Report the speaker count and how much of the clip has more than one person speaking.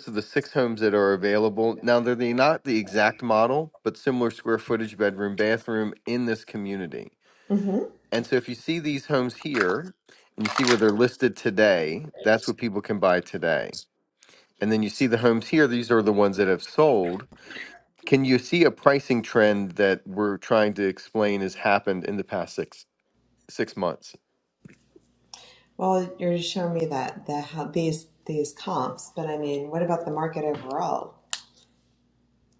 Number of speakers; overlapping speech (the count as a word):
two, no overlap